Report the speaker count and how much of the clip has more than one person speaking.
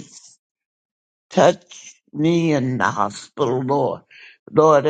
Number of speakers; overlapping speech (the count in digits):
1, no overlap